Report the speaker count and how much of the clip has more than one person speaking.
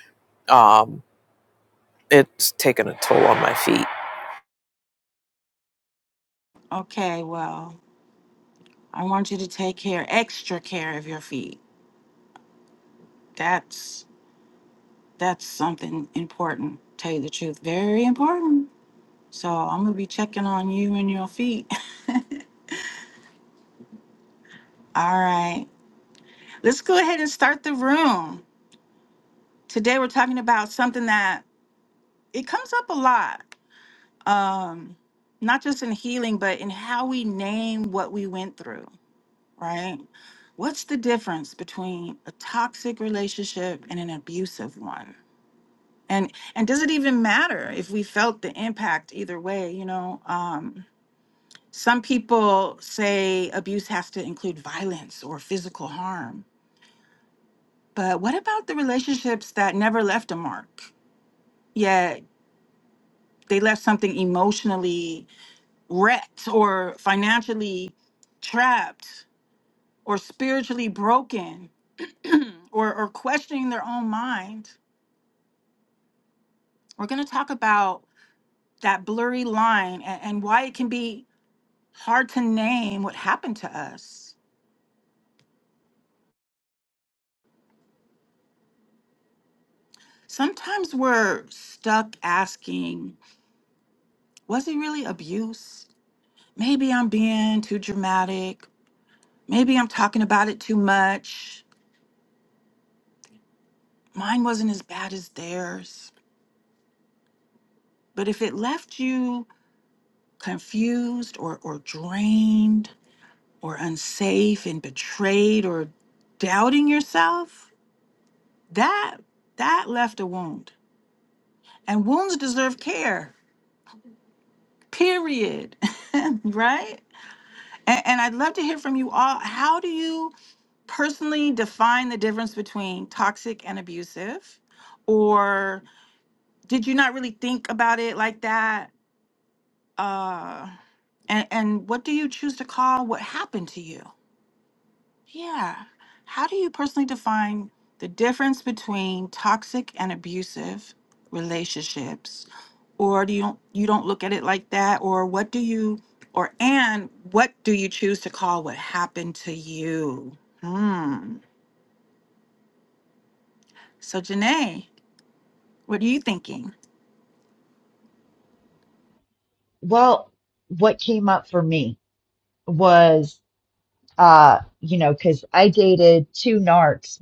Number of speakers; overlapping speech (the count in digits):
3, no overlap